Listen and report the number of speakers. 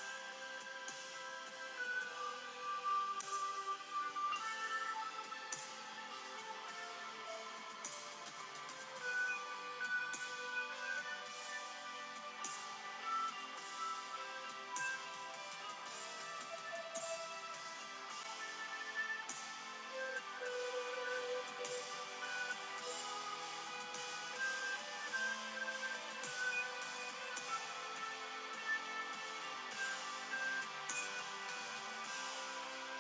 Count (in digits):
0